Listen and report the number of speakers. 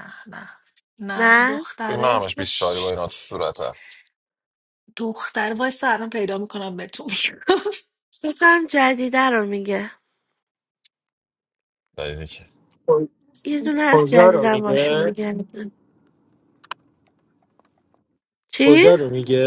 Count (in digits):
4